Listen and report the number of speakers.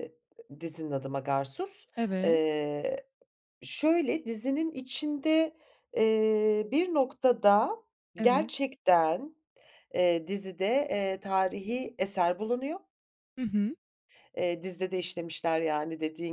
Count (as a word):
two